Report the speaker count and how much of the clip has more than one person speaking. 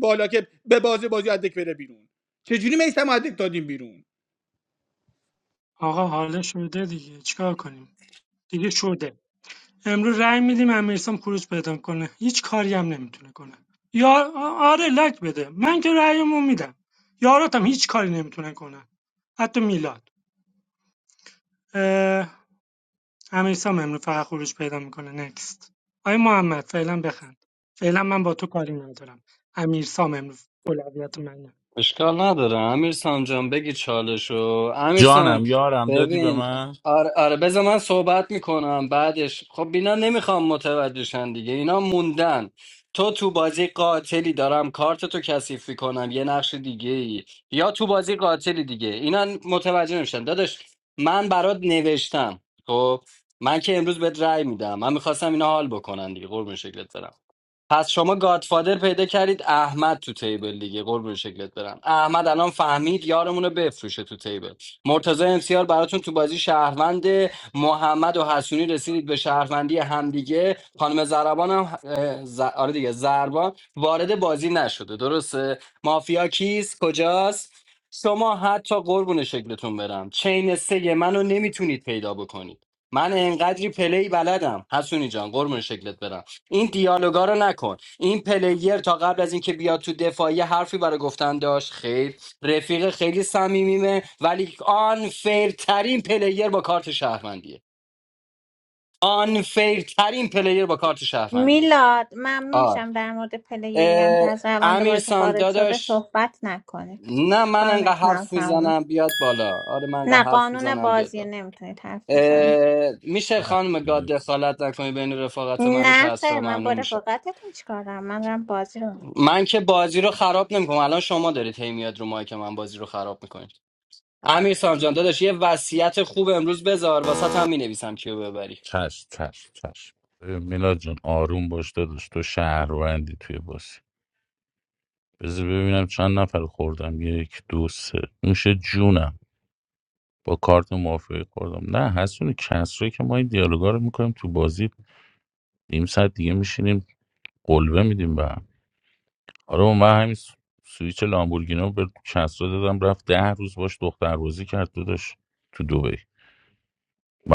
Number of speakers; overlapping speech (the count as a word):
five, about 5%